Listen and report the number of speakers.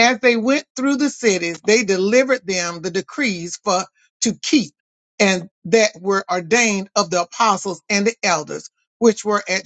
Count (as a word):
one